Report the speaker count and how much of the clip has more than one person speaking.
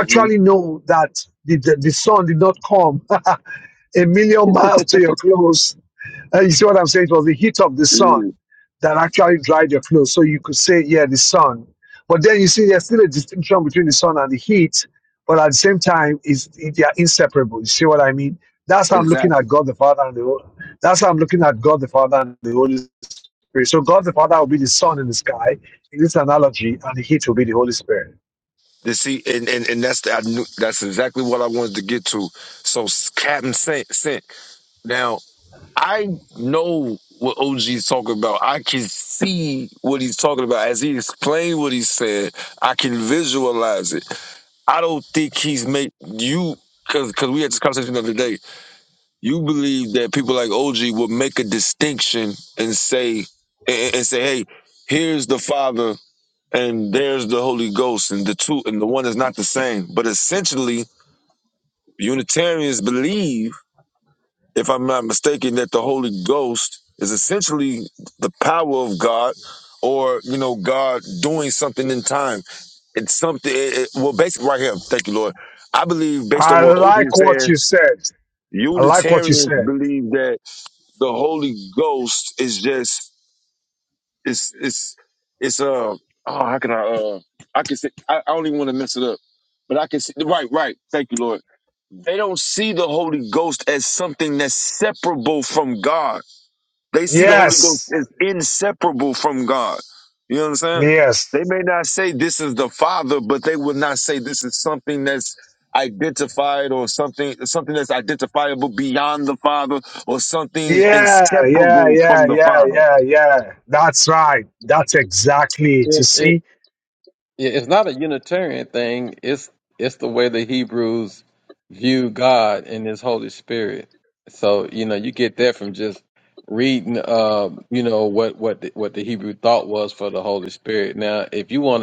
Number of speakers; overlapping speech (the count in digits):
3, about 5%